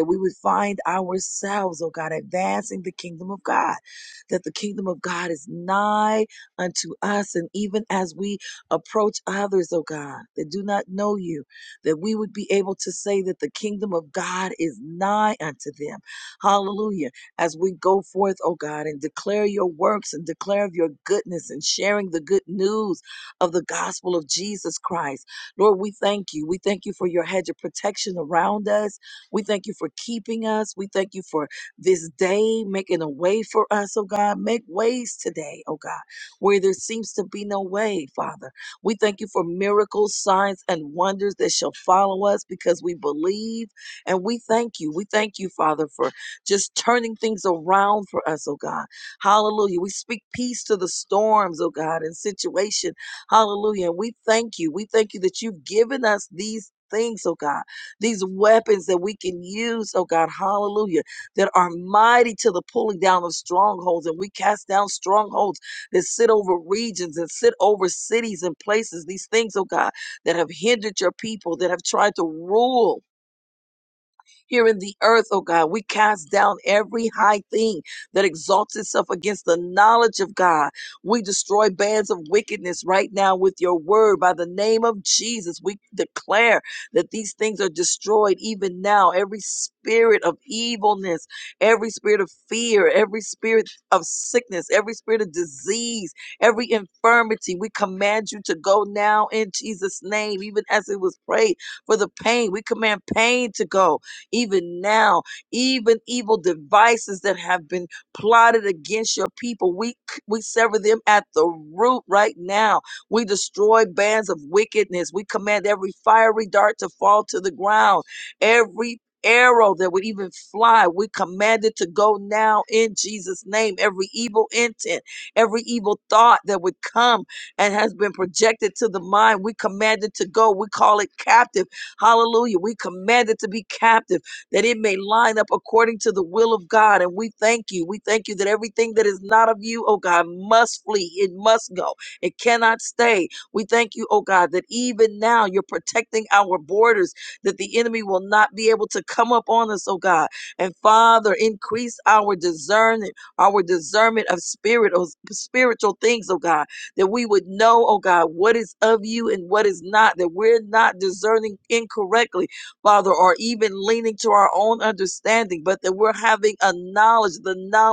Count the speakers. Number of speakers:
1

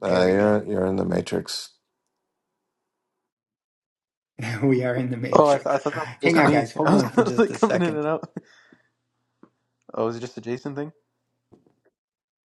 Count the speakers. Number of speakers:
3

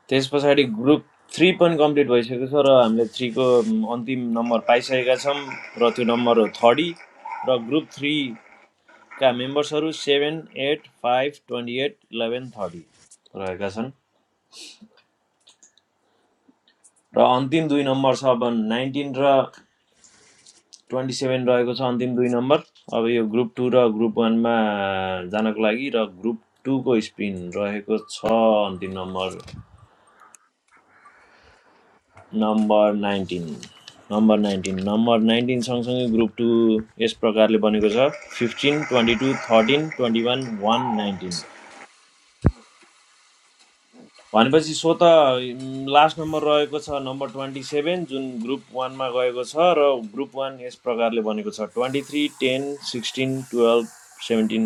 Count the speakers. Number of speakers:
1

